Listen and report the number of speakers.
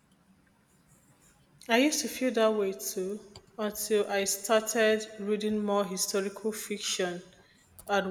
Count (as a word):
one